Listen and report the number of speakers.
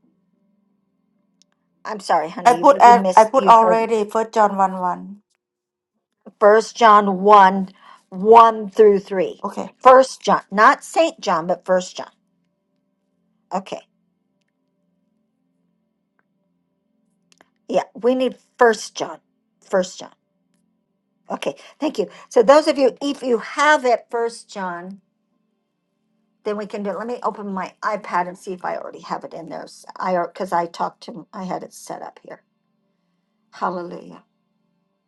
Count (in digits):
2